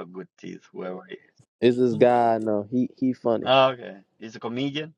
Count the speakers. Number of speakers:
two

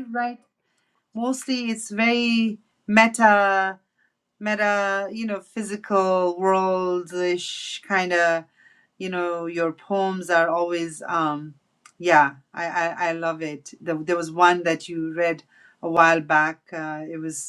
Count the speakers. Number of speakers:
one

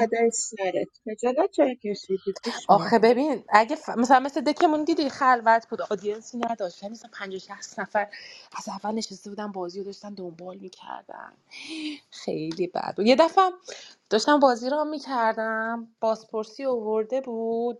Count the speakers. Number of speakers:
two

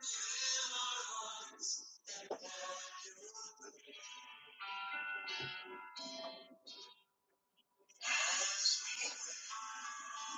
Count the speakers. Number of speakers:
zero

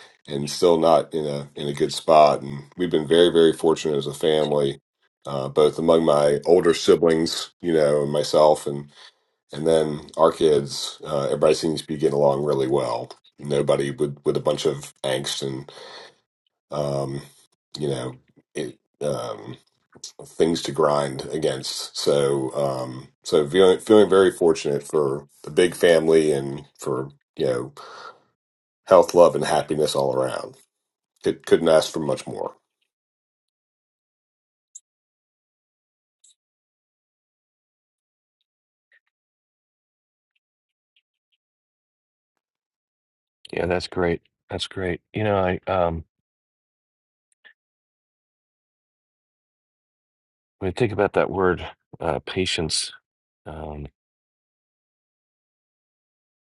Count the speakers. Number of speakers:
two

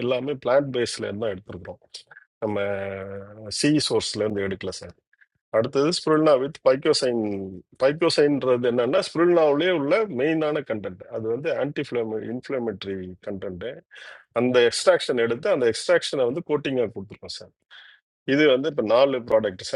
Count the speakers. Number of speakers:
one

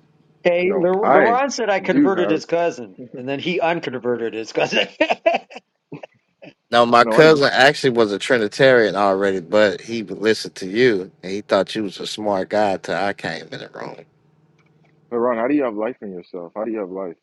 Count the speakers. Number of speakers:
three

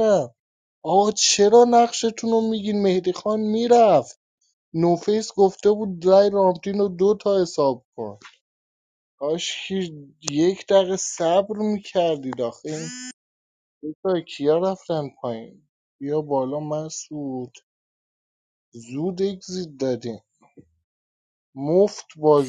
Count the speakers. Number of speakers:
one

